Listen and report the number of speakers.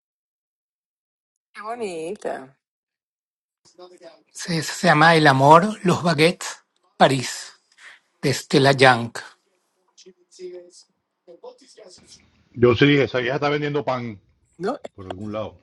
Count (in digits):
3